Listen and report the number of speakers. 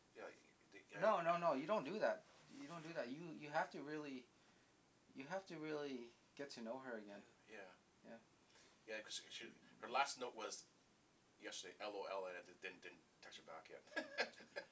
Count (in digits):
2